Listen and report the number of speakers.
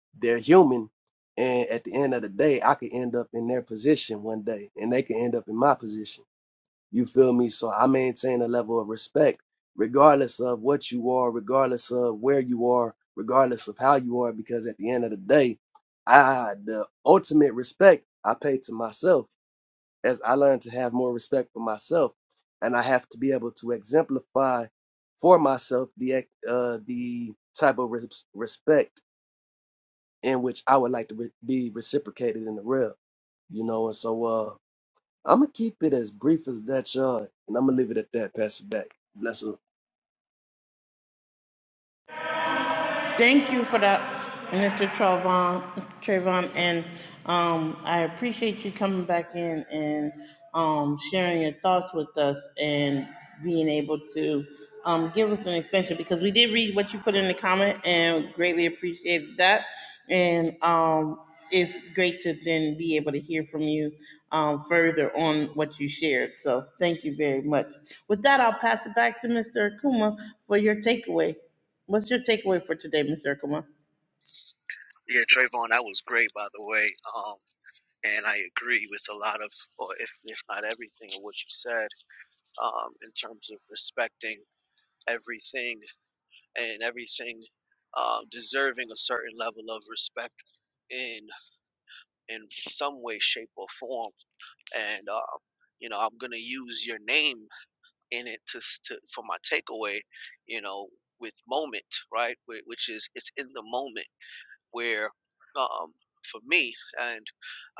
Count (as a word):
three